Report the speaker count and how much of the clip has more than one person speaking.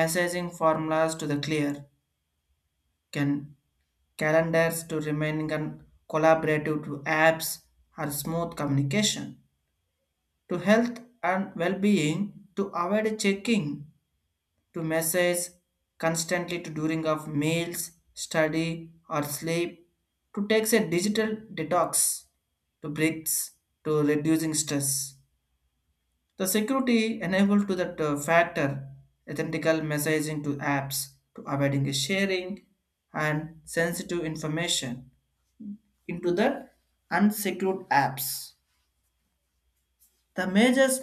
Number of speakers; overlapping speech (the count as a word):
one, no overlap